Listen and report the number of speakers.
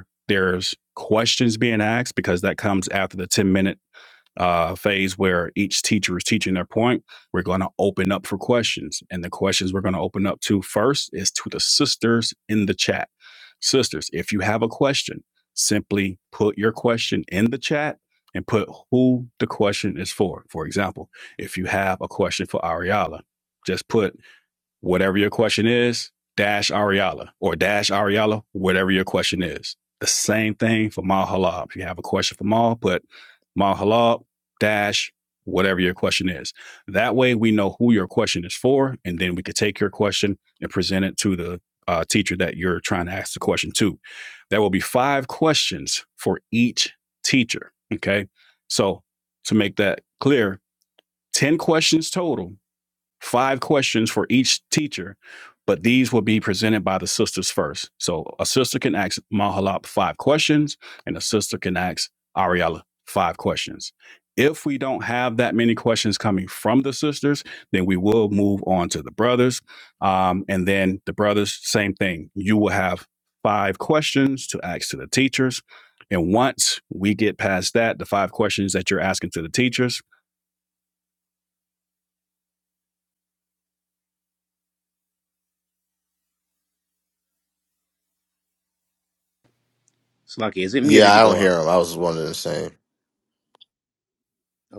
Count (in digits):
3